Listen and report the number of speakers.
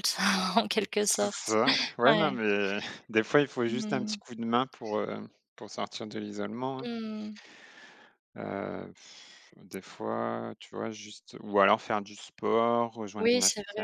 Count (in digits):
2